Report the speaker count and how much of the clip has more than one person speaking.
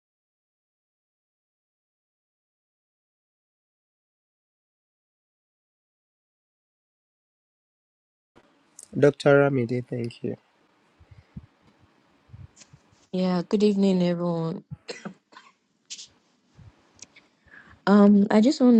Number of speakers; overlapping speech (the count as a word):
two, no overlap